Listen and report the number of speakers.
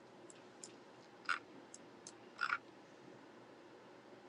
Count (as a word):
zero